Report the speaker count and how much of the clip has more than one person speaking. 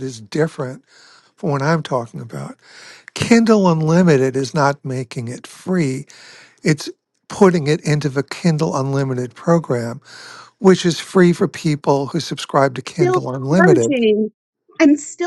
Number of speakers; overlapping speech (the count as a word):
two, about 6%